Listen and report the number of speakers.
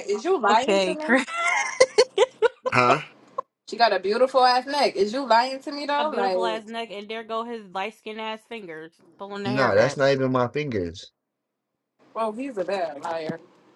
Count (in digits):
3